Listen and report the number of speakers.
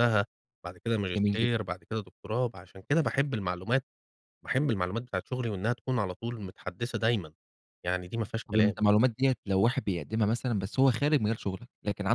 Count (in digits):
2